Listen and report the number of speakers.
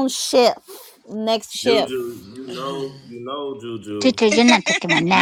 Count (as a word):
three